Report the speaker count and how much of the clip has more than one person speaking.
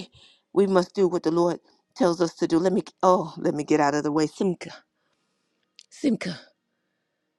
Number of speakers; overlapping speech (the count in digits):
1, no overlap